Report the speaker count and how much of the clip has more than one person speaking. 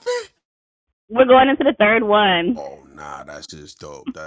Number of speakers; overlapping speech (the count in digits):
2, under 1%